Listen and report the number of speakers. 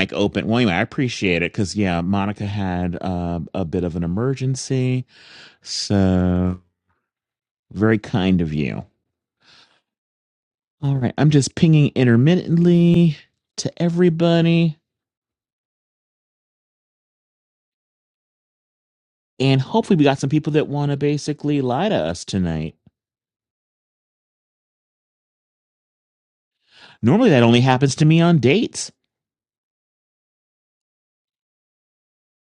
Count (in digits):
1